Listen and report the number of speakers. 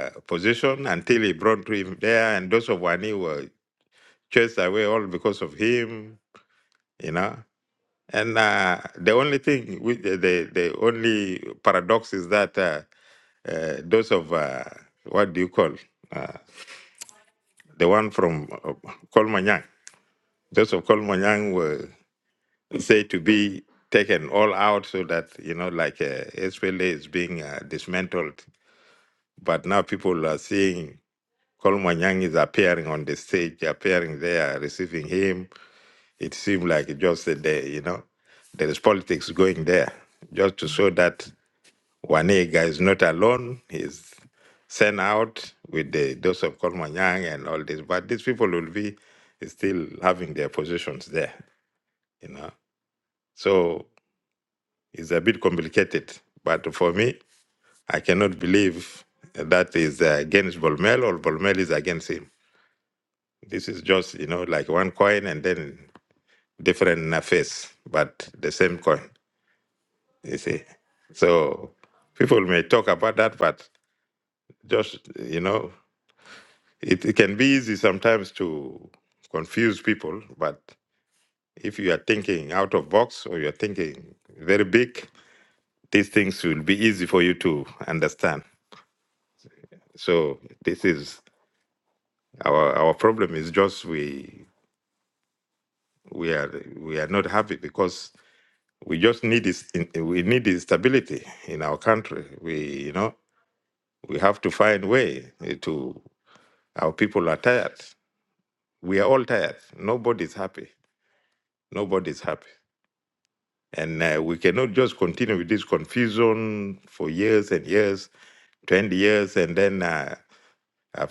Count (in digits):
1